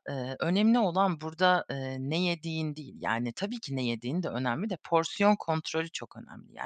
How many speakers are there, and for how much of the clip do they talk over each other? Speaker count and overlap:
one, no overlap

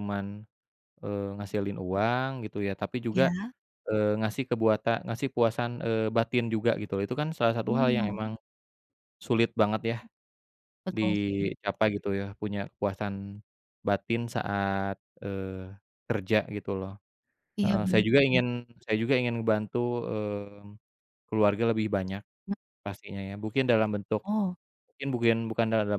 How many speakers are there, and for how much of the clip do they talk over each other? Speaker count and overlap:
two, about 8%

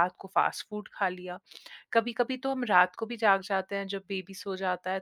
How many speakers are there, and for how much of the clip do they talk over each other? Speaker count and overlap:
one, no overlap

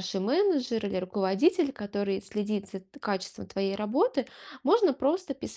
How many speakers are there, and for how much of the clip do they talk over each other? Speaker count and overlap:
one, no overlap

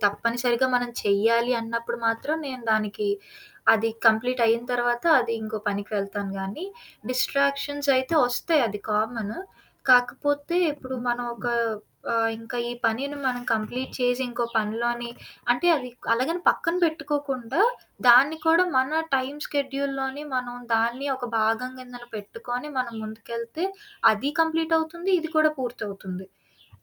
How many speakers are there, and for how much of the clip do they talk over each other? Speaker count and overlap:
one, no overlap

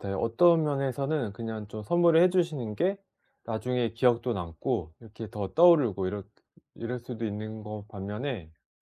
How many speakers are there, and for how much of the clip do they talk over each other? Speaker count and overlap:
one, no overlap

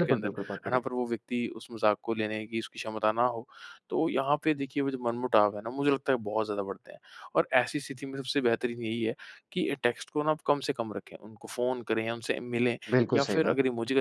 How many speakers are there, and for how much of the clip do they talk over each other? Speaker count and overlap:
two, about 8%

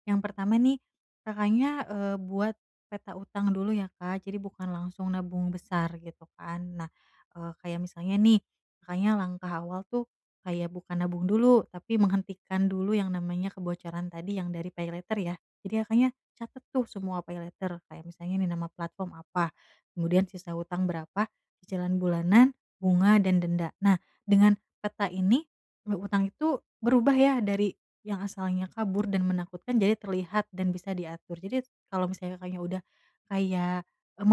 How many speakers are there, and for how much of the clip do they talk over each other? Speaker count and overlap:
one, no overlap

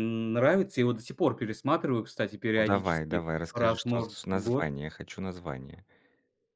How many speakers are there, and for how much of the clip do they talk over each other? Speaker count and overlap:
two, about 27%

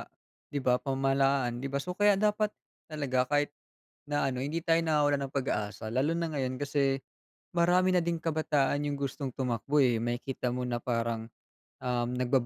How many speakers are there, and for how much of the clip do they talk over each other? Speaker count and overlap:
one, no overlap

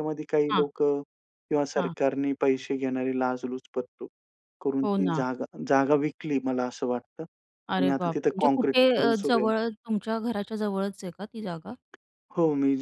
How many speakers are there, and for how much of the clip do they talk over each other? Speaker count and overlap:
two, about 20%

